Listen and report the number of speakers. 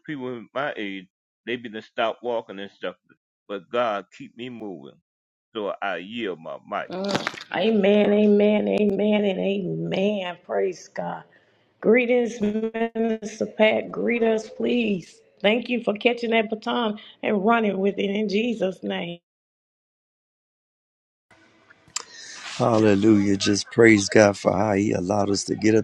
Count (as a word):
three